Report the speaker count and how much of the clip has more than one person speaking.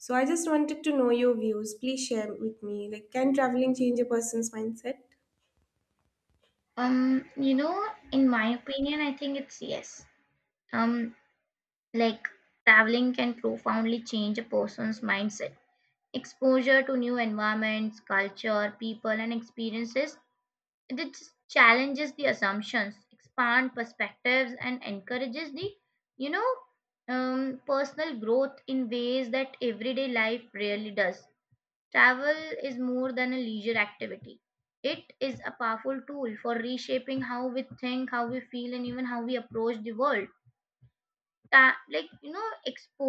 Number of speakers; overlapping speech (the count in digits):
2, no overlap